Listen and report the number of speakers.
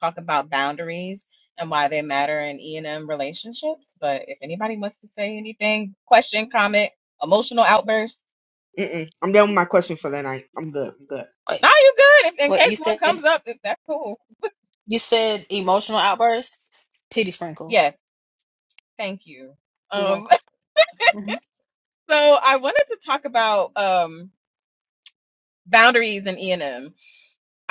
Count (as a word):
three